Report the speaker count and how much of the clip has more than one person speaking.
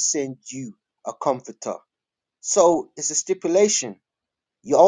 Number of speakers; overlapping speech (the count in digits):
1, no overlap